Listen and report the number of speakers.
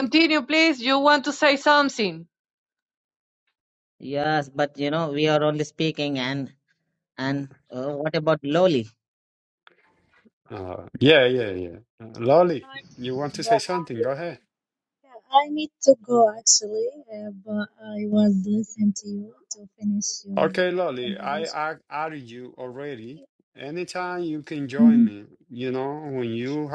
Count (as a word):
four